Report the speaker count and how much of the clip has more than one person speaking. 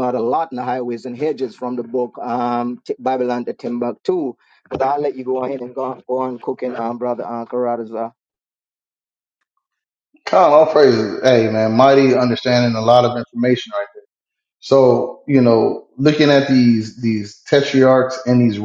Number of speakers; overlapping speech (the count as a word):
two, no overlap